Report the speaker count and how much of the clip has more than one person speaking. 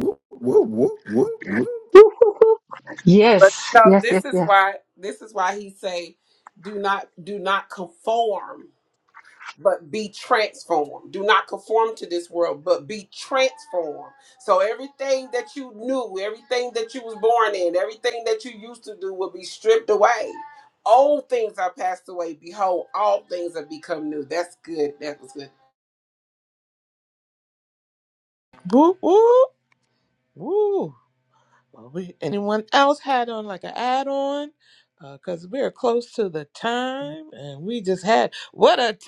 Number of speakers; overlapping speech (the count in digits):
4, about 3%